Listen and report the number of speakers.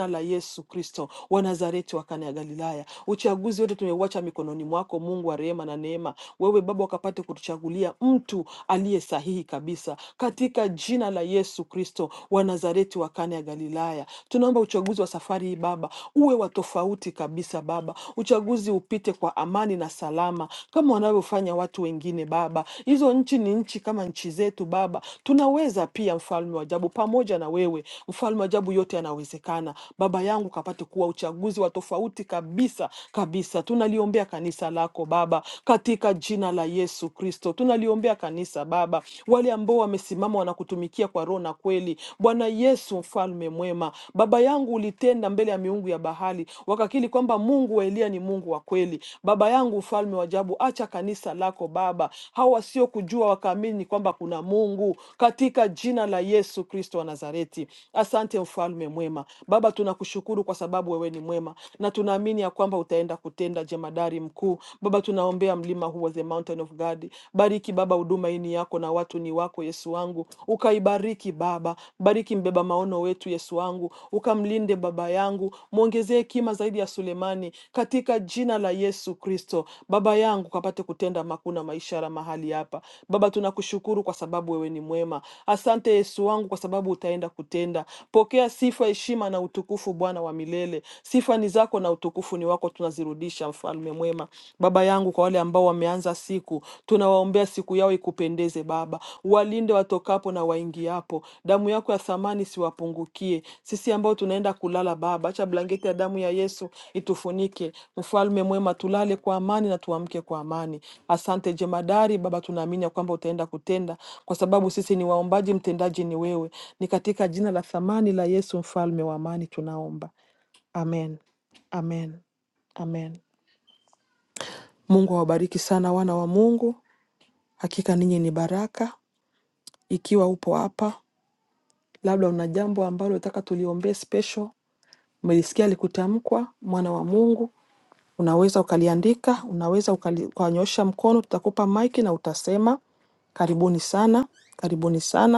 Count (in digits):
1